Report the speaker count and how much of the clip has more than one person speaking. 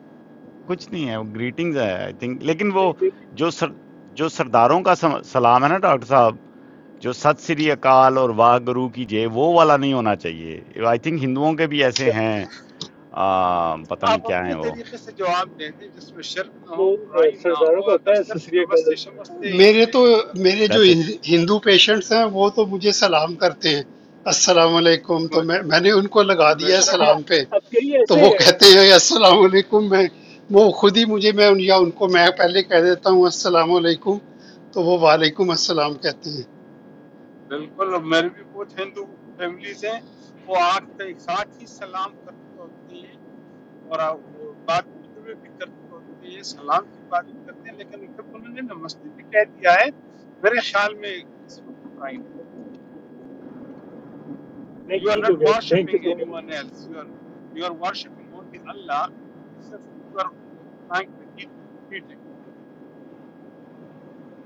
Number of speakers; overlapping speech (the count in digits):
4, about 10%